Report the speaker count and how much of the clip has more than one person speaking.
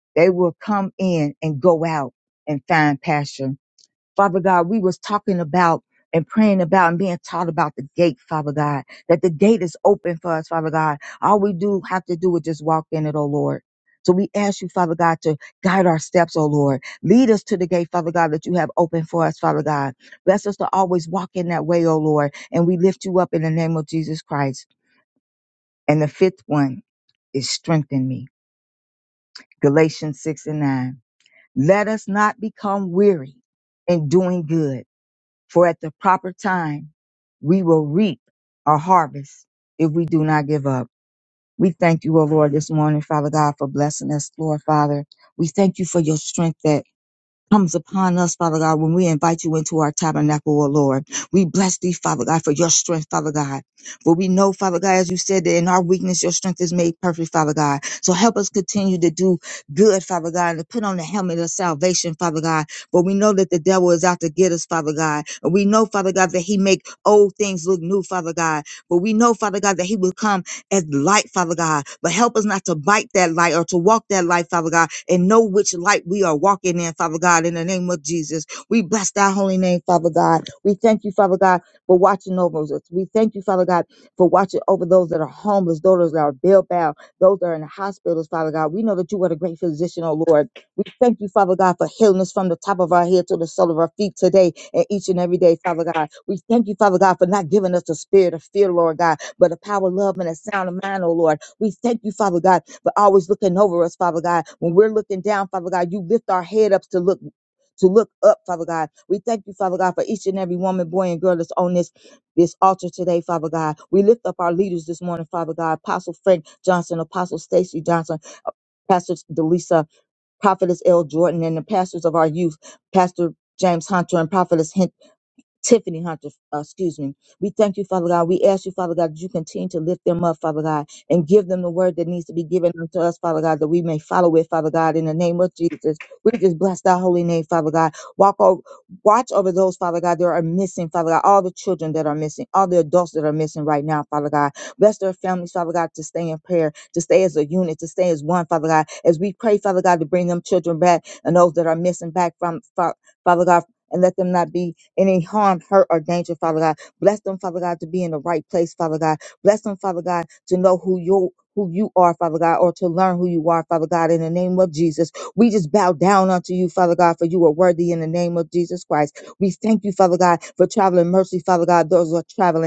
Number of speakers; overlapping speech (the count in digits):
1, no overlap